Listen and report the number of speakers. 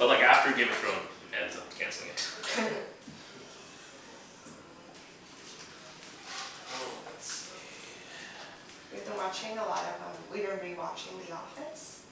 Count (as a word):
two